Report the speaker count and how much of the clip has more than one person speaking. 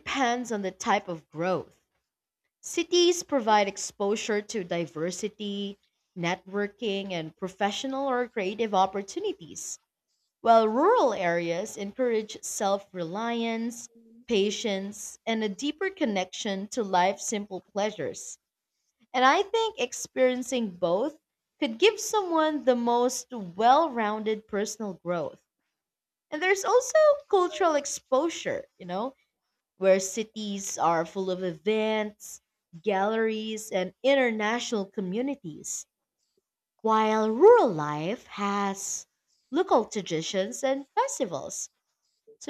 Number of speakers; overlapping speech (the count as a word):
one, no overlap